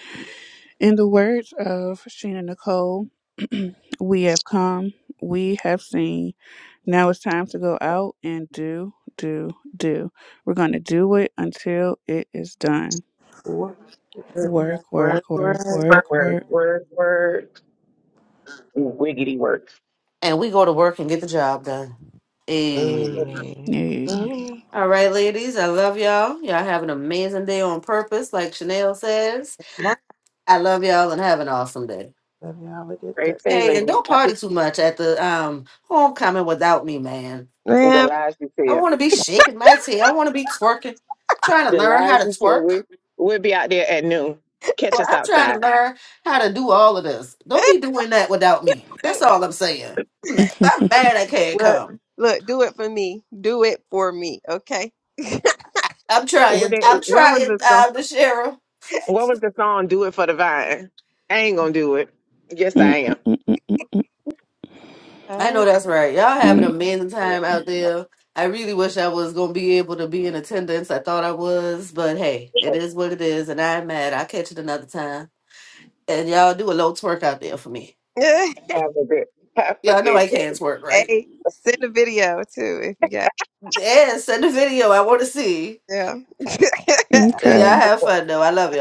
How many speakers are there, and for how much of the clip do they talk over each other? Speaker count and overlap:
five, about 11%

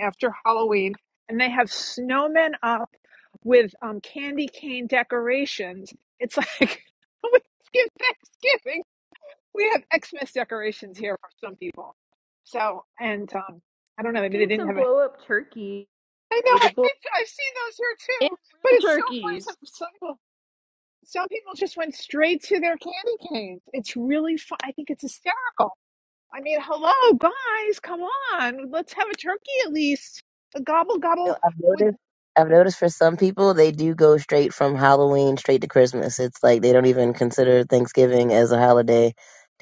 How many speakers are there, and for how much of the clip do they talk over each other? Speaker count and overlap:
three, about 5%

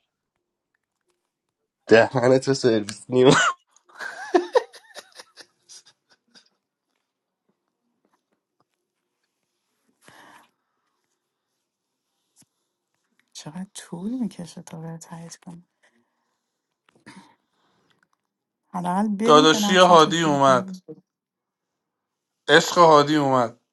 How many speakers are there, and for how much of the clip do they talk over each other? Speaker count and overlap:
three, about 6%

